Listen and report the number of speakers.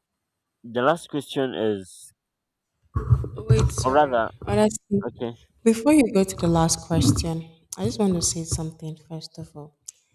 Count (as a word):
two